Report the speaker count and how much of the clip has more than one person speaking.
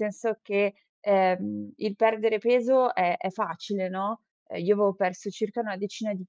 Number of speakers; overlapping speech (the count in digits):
1, no overlap